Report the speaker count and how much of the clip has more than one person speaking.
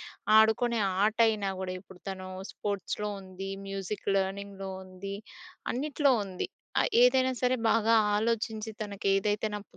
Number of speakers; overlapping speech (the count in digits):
1, no overlap